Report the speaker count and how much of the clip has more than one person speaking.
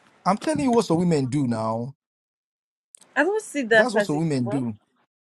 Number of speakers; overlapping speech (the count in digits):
2, about 17%